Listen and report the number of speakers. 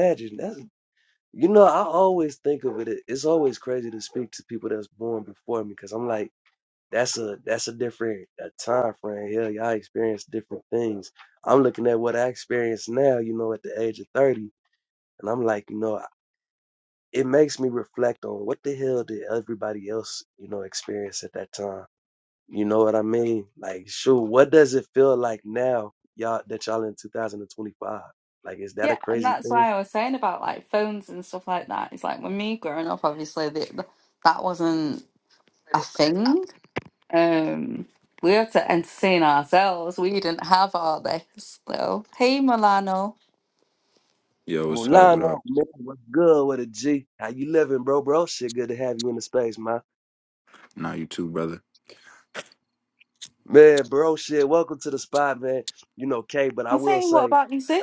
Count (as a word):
three